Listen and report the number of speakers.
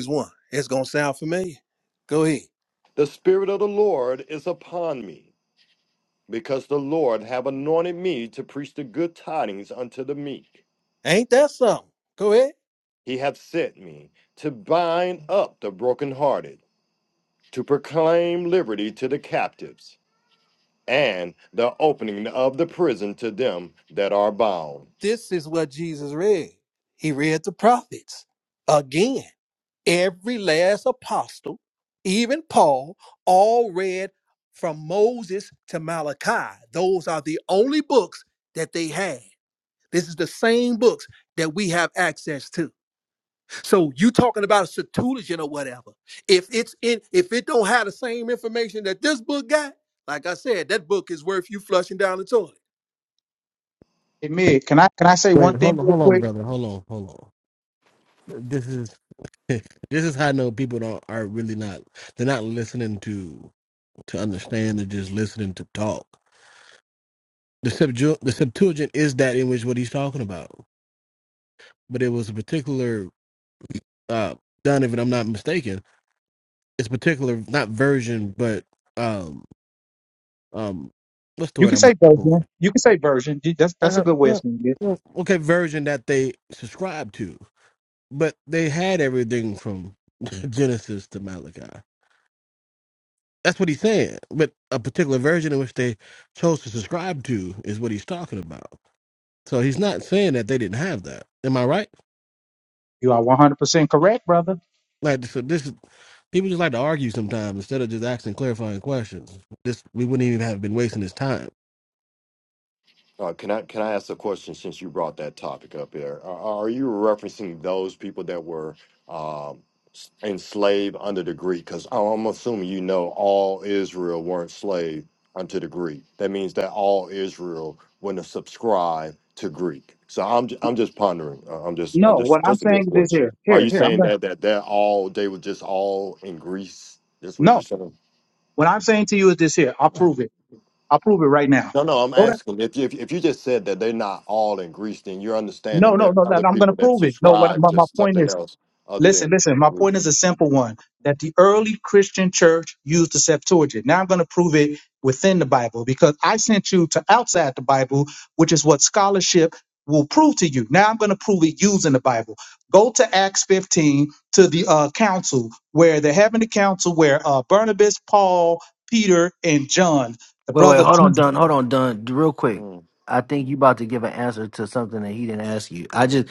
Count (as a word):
five